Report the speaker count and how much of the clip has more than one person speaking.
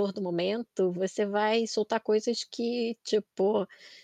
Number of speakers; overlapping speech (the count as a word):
one, no overlap